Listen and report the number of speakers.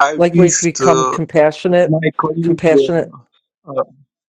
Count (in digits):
2